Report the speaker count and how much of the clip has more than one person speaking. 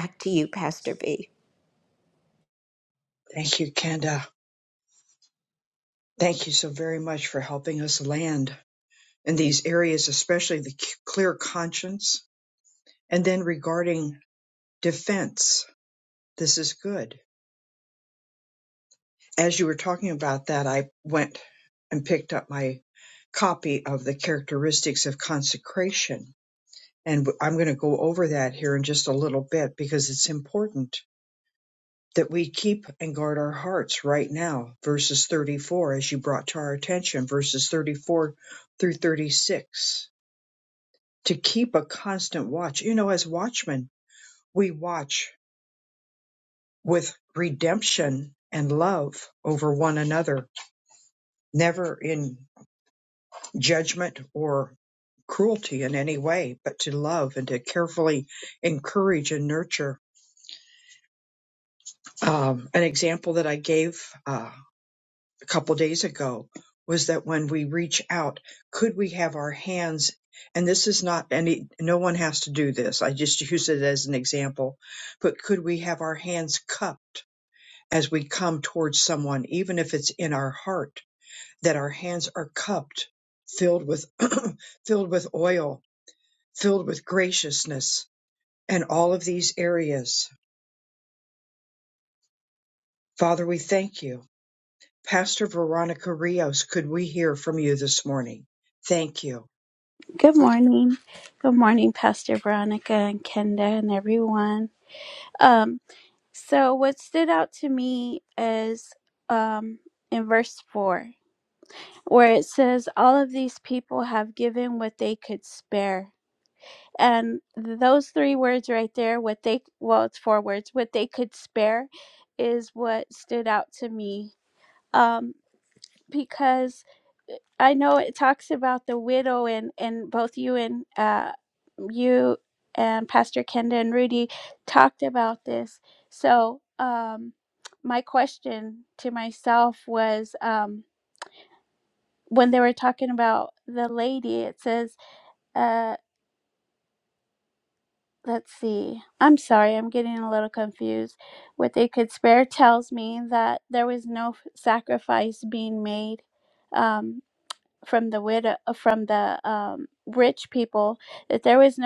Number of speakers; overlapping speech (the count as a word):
three, no overlap